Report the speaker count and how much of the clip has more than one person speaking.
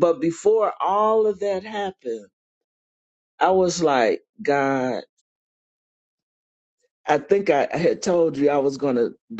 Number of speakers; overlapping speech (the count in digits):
1, no overlap